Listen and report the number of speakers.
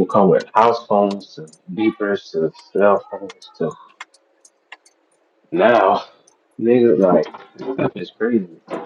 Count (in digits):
1